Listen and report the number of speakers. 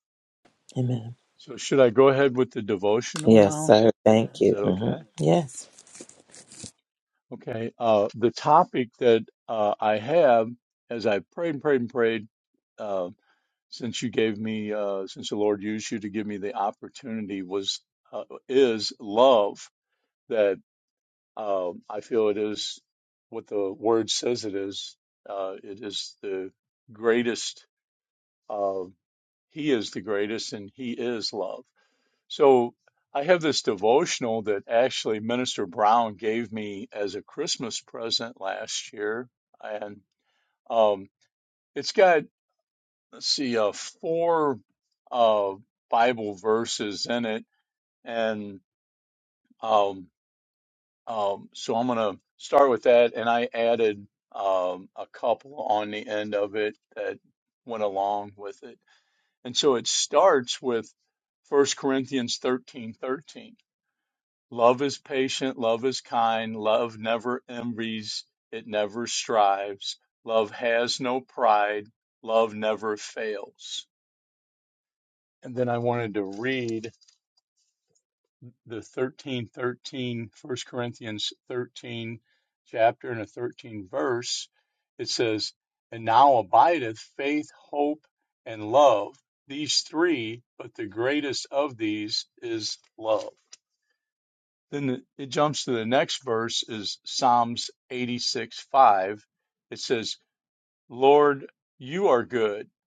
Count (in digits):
2